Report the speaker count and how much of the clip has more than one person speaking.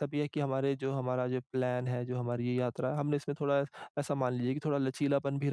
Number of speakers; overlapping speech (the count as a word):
one, no overlap